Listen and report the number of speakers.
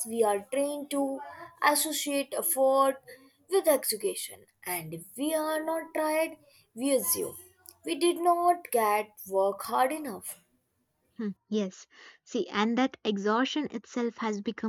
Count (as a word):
two